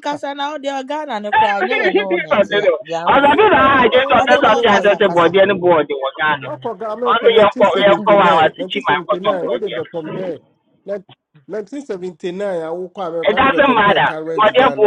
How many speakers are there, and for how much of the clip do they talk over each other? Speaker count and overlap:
three, about 56%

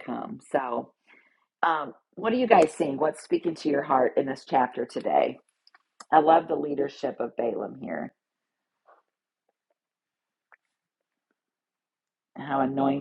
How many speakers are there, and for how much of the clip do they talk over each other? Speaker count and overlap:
one, no overlap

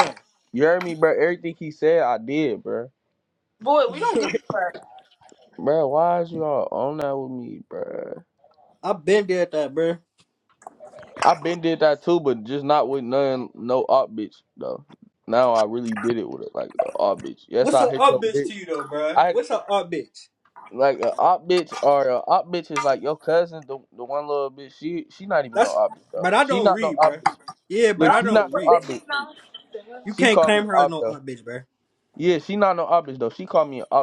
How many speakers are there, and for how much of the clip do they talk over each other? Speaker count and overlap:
three, about 13%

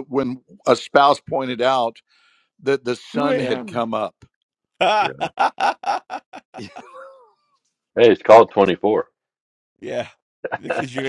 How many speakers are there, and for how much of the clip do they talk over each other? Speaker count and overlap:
three, about 6%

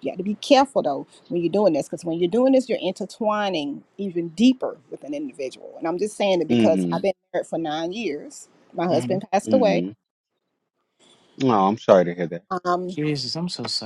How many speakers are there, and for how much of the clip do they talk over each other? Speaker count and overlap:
three, about 8%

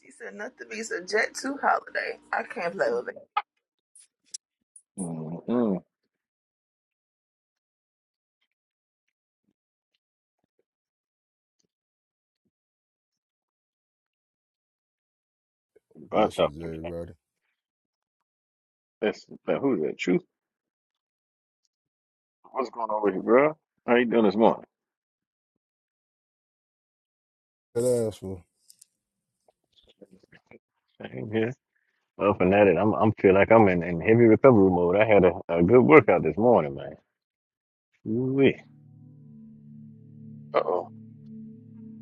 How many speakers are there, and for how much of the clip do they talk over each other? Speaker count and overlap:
three, about 2%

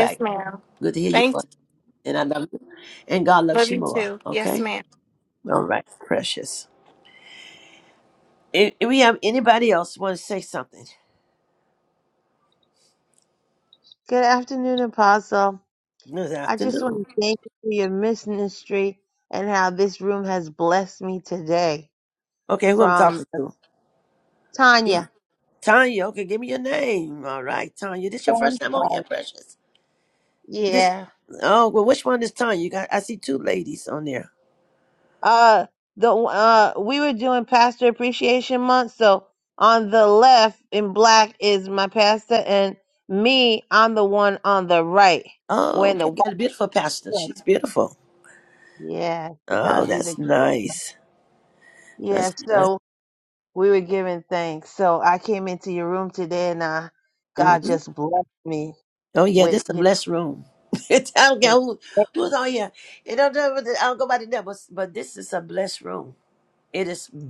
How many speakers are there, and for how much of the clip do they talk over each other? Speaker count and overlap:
three, about 9%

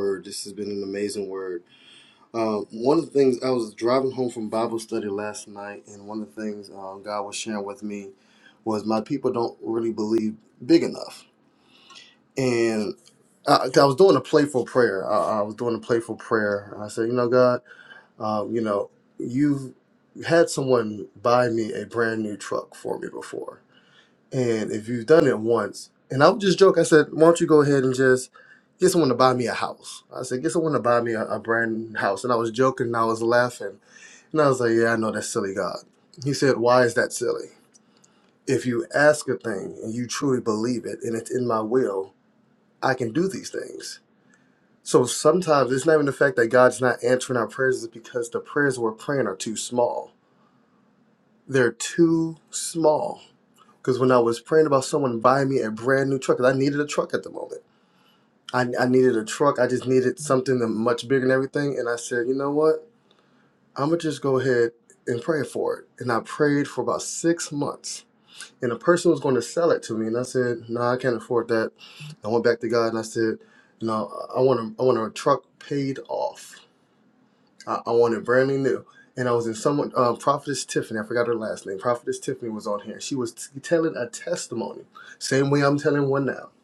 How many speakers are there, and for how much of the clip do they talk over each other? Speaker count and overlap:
one, no overlap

